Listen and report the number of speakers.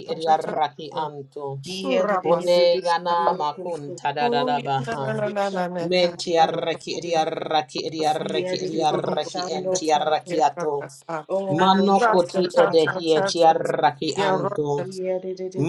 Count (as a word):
three